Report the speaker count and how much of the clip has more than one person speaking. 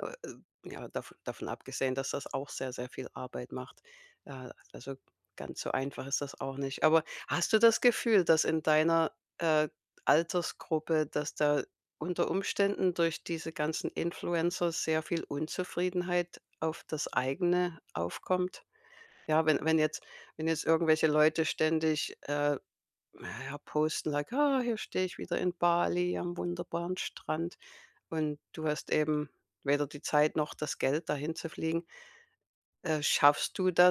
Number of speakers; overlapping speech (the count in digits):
1, no overlap